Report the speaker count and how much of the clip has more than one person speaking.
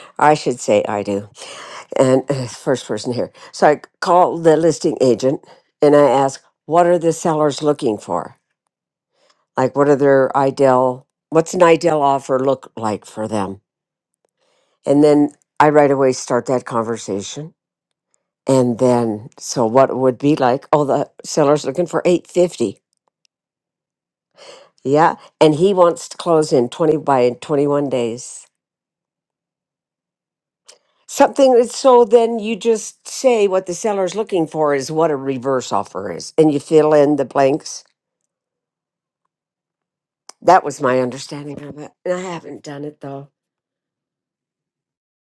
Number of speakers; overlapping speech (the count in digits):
1, no overlap